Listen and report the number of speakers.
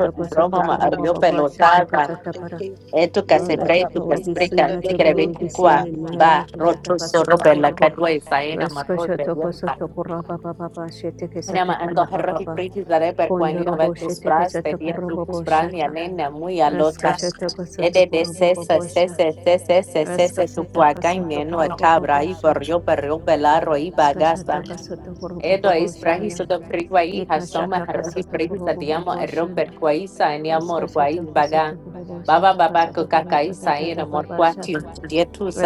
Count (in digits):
2